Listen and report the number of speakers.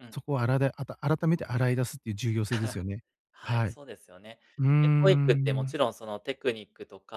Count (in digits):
2